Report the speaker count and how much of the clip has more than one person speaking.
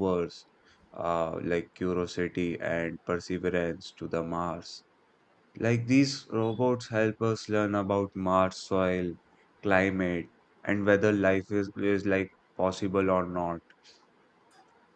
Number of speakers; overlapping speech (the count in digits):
1, no overlap